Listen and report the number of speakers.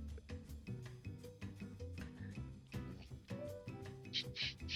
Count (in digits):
0